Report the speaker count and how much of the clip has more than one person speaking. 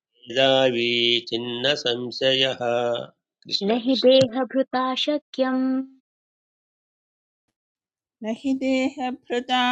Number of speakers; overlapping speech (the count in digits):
3, about 4%